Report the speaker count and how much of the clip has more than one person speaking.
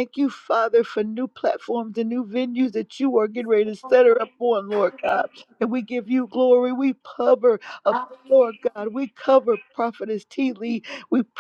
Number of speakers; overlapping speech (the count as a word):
one, no overlap